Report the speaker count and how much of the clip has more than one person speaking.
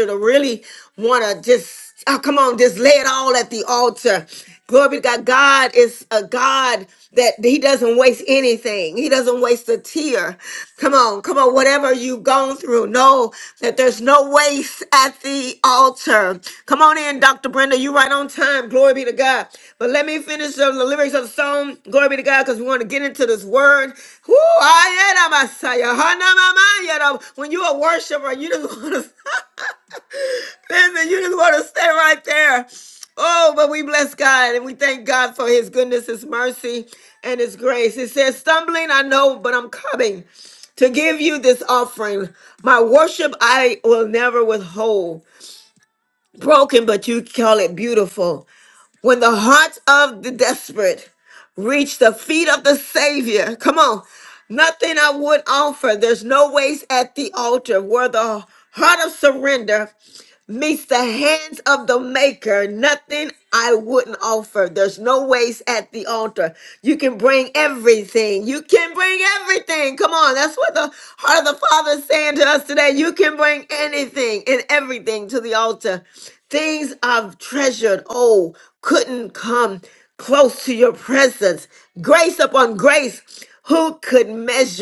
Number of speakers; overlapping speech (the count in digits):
1, no overlap